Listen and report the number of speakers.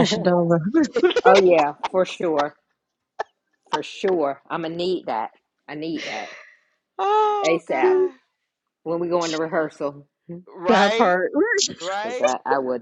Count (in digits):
3